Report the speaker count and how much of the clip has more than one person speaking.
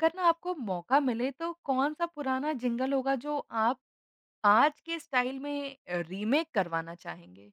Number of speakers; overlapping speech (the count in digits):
1, no overlap